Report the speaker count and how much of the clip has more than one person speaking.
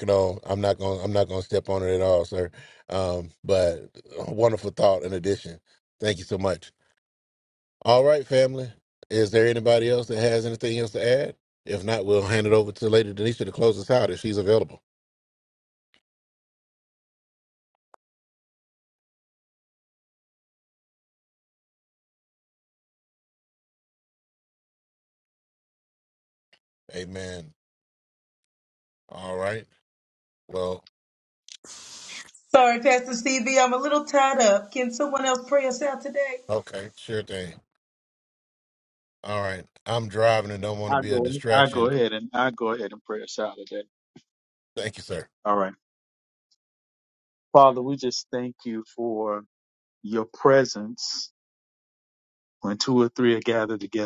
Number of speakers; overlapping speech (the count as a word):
three, about 2%